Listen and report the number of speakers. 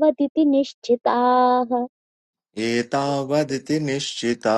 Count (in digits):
2